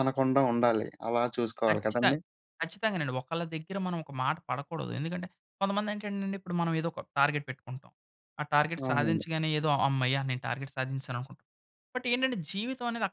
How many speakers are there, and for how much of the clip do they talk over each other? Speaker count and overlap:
2, about 7%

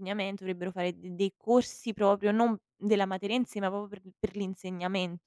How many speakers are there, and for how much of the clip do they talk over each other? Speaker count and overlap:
1, no overlap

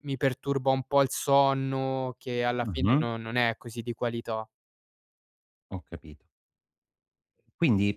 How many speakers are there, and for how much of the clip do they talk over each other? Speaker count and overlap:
2, about 6%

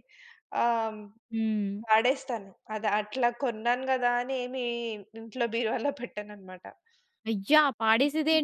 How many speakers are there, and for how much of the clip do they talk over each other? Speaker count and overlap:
2, no overlap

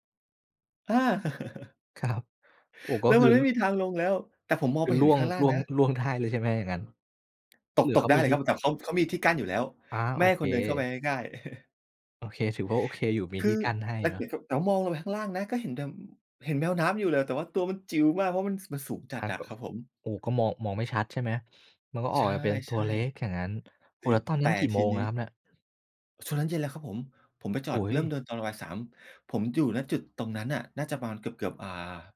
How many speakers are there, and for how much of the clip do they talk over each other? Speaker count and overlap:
2, about 13%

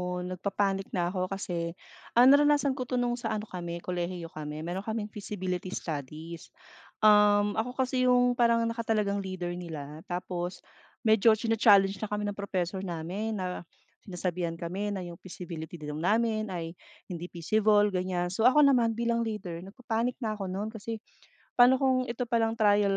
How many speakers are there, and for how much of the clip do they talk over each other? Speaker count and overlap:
1, no overlap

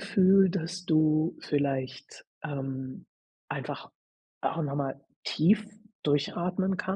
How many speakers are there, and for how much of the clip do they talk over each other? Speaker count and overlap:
1, no overlap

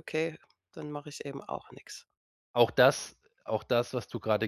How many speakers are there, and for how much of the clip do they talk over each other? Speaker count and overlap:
2, no overlap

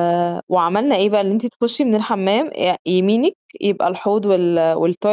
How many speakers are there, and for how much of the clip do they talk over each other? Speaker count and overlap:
1, no overlap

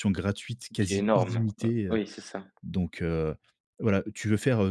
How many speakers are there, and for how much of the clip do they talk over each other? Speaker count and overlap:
2, about 25%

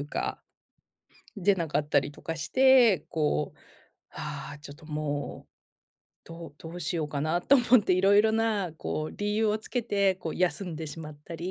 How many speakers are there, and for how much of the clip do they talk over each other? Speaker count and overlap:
1, no overlap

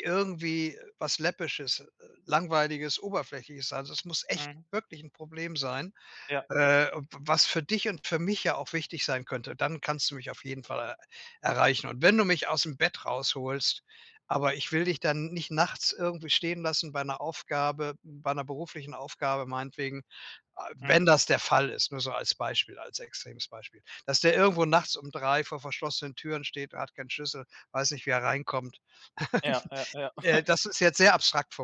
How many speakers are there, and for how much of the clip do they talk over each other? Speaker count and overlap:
2, about 1%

